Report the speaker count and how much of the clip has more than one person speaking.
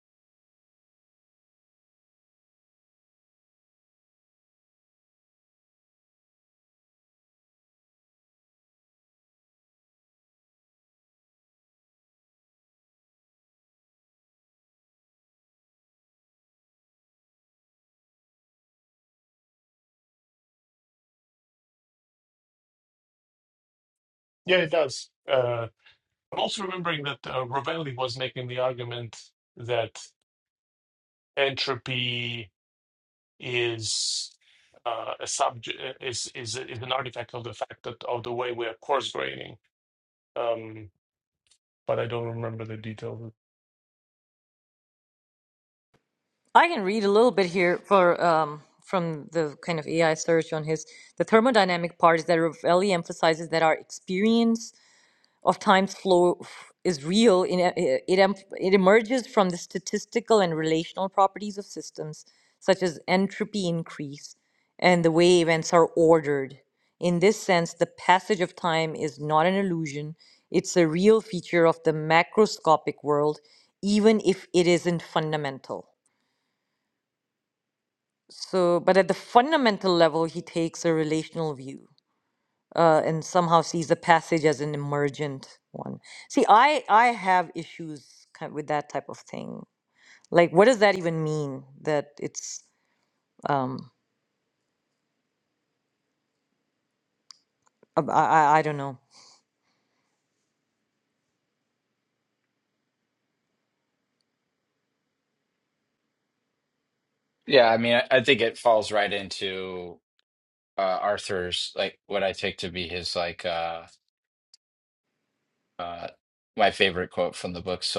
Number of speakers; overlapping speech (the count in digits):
3, no overlap